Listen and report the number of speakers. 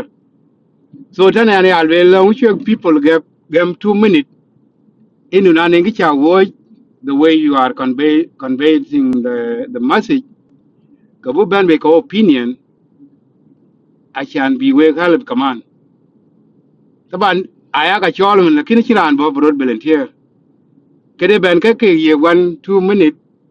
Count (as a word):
one